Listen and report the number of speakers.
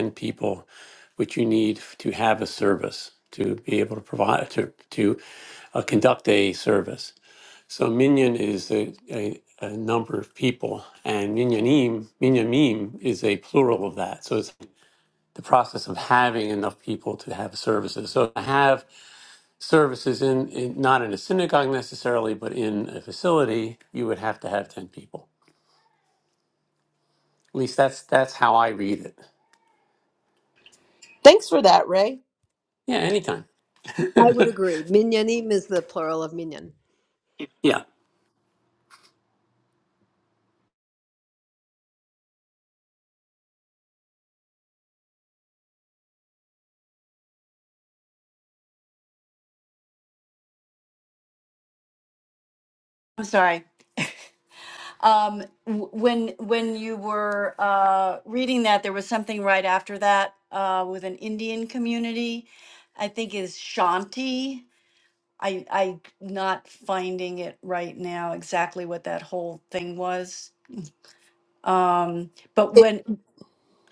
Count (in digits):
4